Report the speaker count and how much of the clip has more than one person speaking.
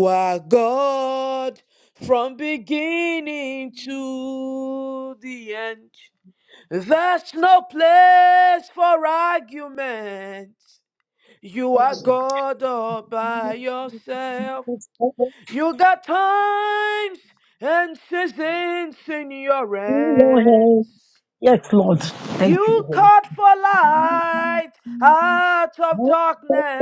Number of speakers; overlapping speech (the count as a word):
two, about 6%